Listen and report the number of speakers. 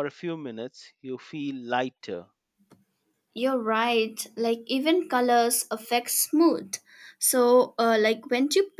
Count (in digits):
2